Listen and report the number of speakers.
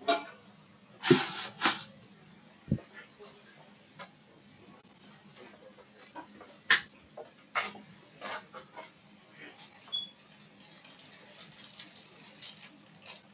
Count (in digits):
0